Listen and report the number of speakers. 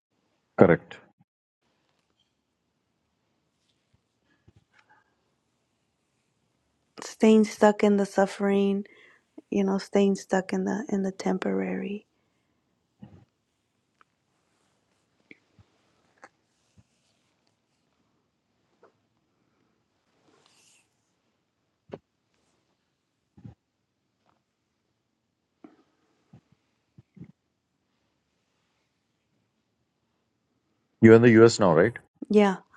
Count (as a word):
two